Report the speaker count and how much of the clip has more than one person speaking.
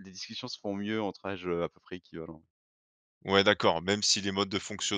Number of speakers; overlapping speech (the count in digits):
2, no overlap